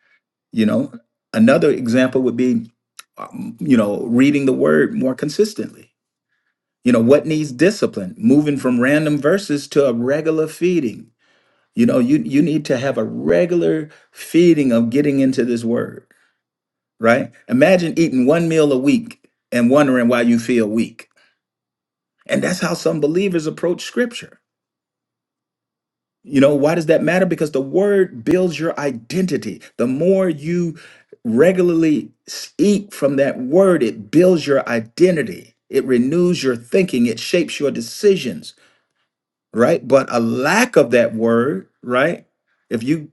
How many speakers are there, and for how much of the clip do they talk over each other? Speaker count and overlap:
1, no overlap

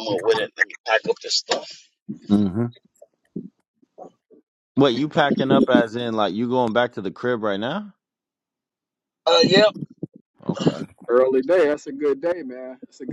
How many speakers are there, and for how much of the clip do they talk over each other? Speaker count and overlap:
3, no overlap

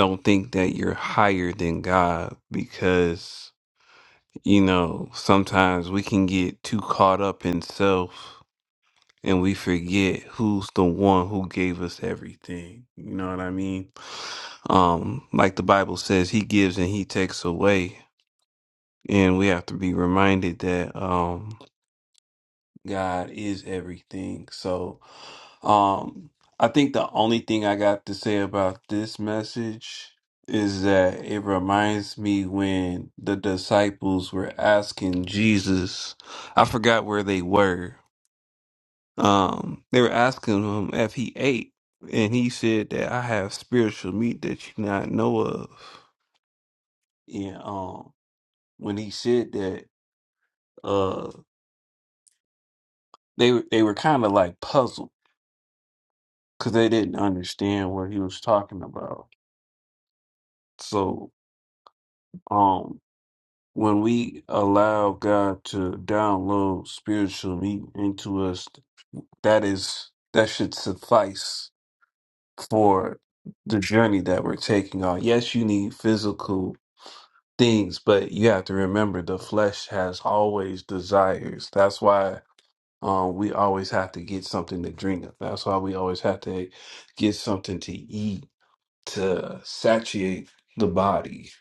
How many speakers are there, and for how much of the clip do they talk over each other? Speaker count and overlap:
1, no overlap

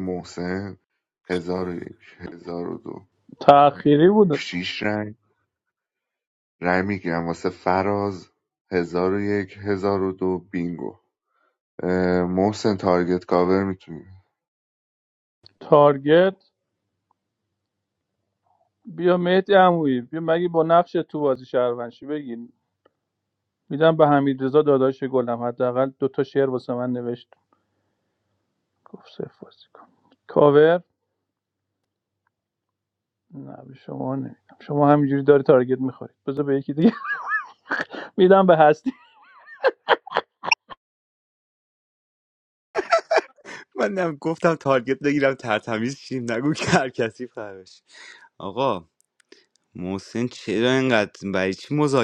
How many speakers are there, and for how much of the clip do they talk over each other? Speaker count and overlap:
3, under 1%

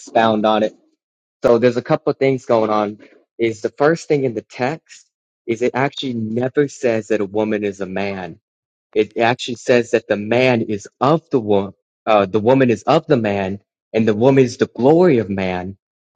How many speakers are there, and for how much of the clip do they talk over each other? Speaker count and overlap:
1, no overlap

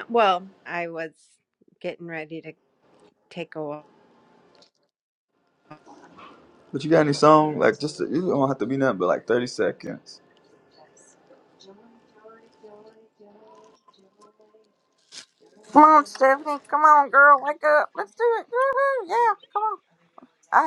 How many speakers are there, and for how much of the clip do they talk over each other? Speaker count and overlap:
3, no overlap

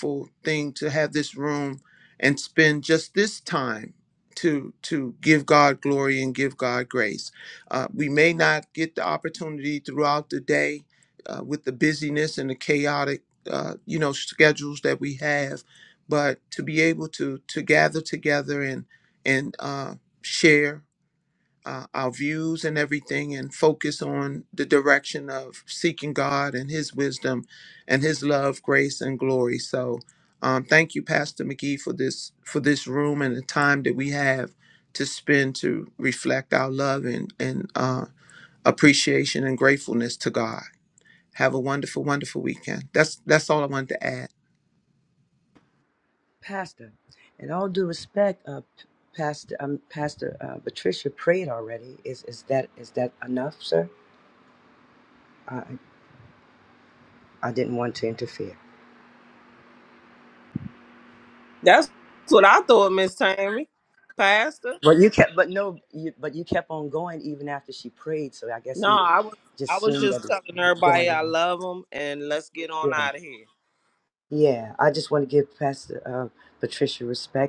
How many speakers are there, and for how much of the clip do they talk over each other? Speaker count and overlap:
3, about 2%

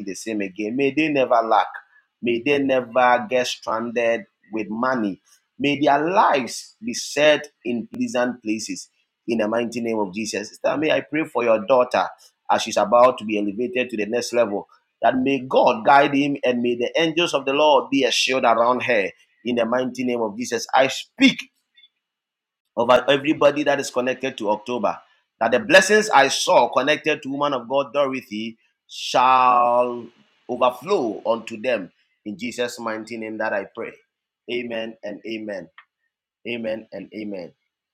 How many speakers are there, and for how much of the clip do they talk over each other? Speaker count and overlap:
1, no overlap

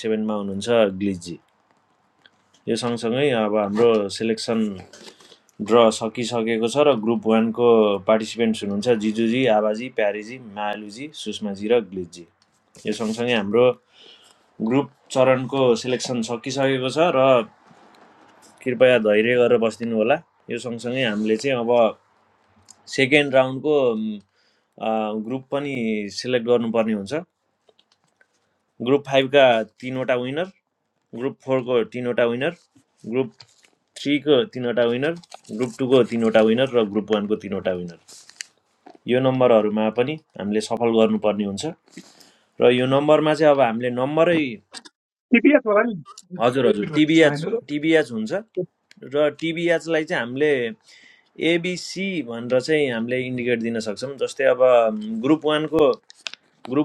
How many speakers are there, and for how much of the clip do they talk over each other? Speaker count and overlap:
2, about 2%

